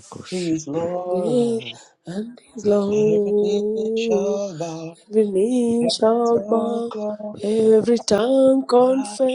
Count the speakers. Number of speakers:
2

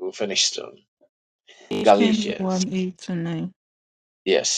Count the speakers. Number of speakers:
2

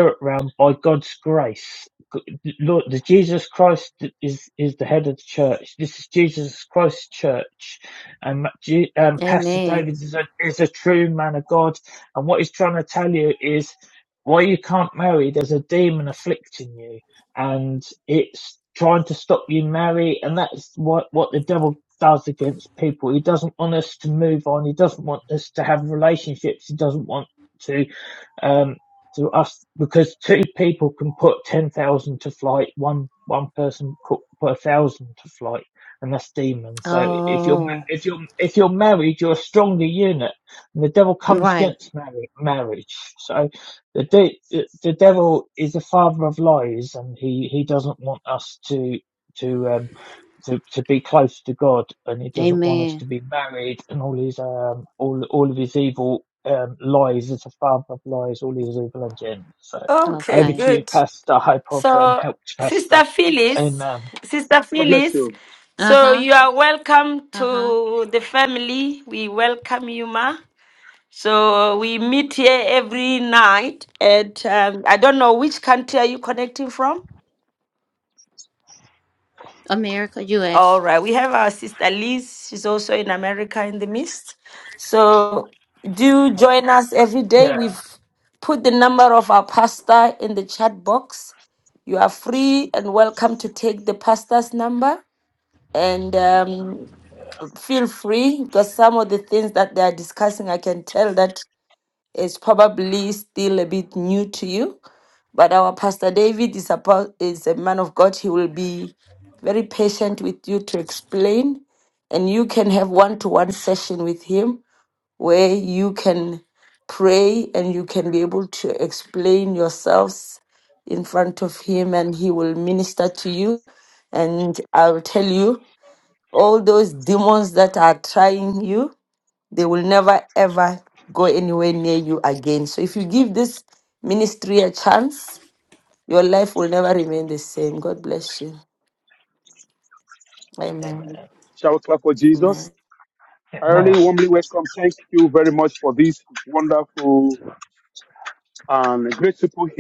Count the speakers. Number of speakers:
4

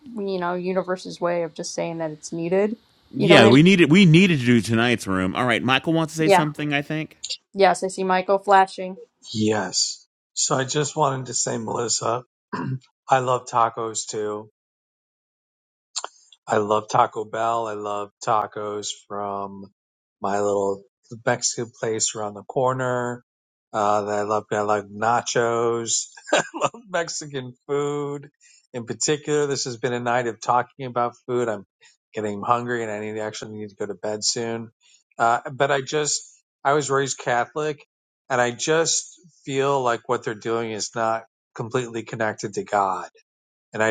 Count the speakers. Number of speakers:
3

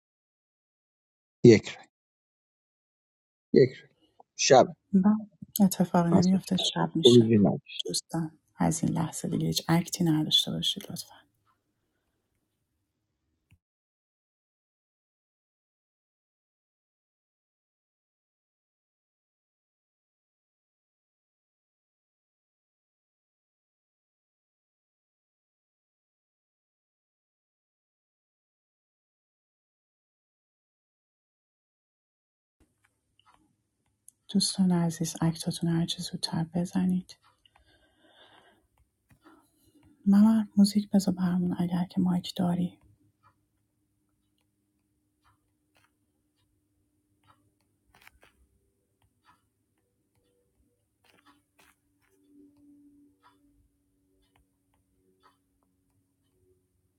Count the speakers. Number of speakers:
2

